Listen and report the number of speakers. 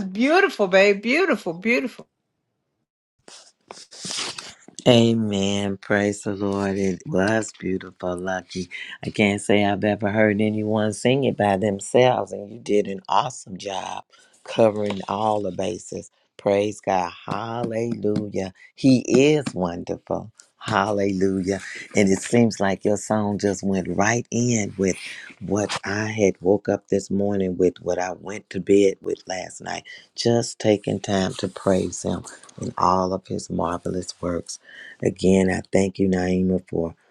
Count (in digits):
2